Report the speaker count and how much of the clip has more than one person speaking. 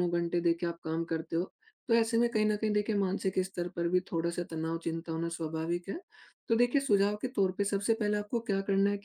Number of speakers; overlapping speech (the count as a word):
one, no overlap